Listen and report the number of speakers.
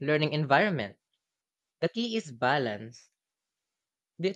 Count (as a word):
one